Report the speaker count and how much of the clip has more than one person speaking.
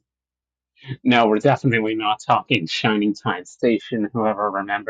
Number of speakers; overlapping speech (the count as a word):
one, no overlap